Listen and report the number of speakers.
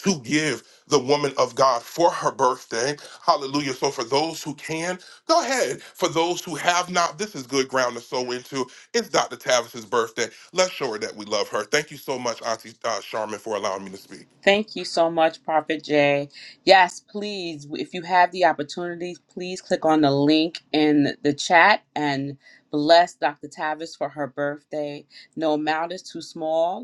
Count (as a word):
two